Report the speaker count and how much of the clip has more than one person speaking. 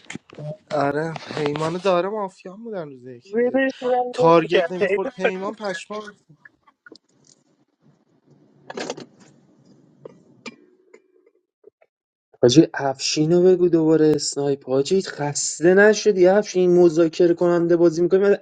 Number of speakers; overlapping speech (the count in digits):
3, about 7%